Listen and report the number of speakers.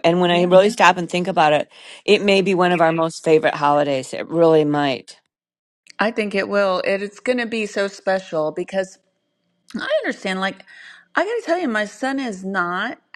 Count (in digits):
2